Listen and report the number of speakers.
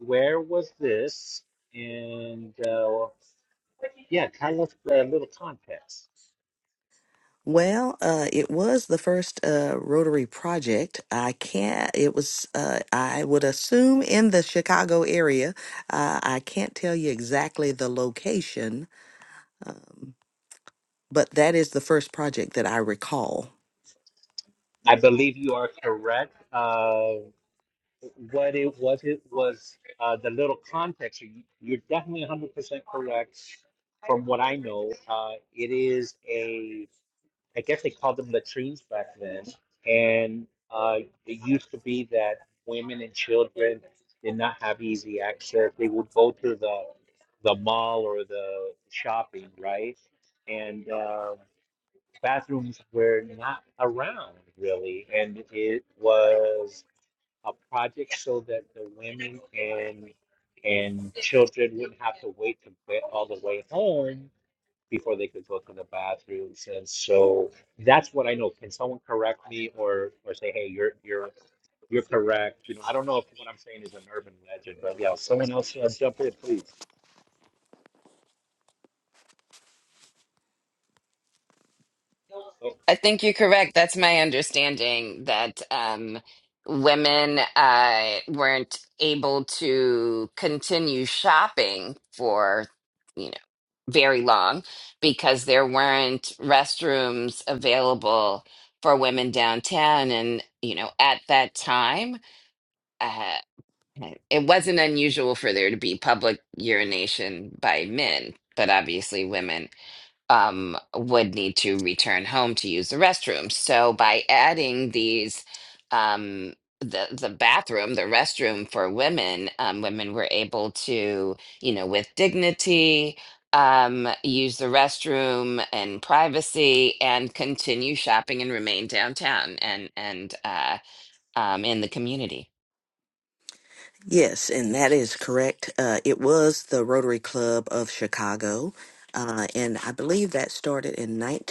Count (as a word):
three